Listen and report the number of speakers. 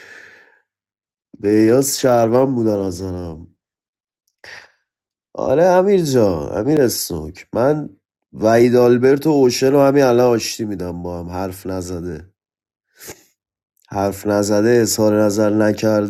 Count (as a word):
one